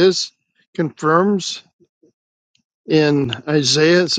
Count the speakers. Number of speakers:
1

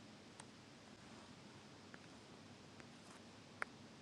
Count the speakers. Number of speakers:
0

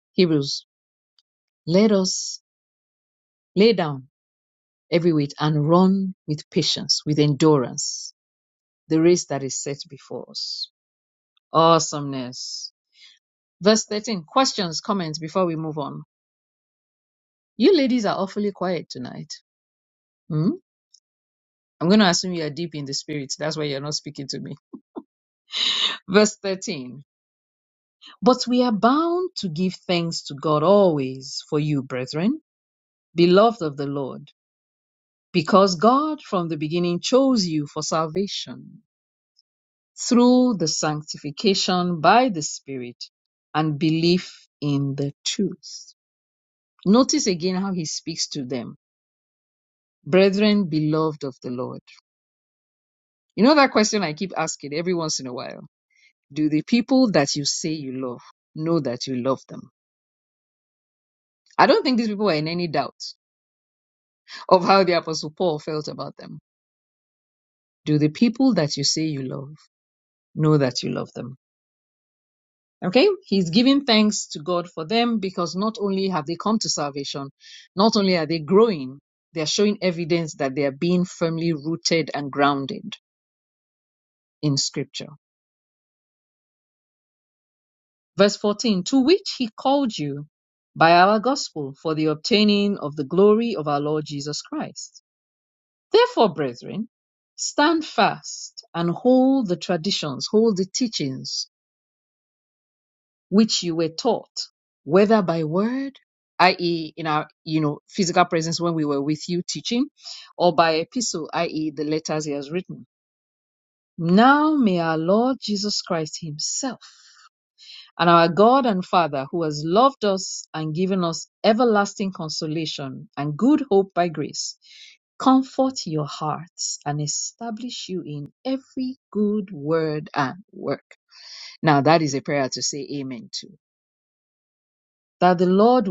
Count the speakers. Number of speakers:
1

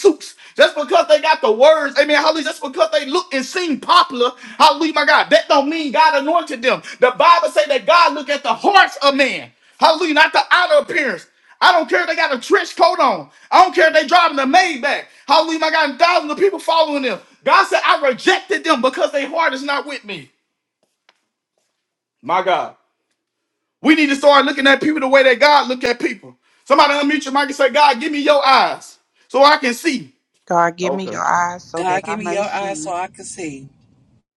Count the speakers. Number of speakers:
3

